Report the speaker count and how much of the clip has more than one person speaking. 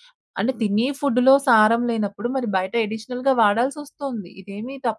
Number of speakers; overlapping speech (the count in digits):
1, no overlap